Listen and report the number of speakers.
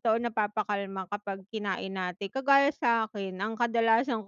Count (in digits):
1